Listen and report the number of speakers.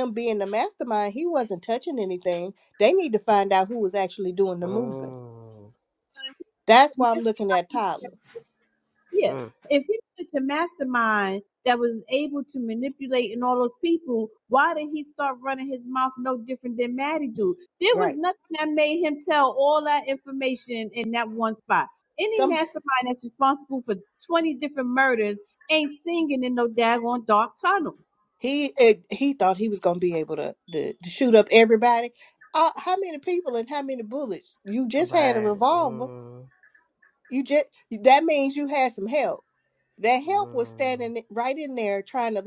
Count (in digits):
3